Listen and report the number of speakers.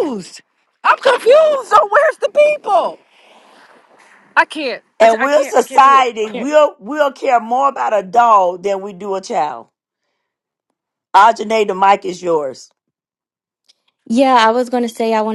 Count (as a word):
three